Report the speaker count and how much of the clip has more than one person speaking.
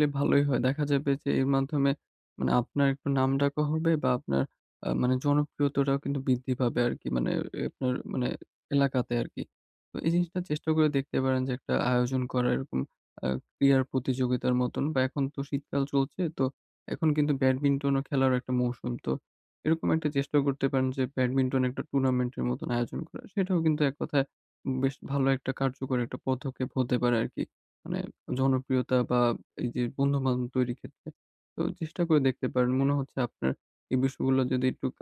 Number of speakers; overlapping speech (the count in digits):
1, no overlap